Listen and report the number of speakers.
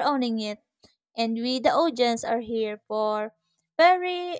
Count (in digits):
1